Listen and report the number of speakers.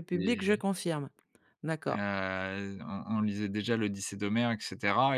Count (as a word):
two